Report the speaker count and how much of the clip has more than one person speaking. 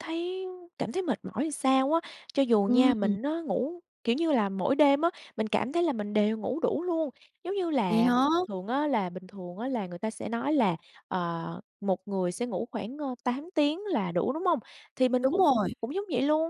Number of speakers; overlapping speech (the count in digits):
2, about 6%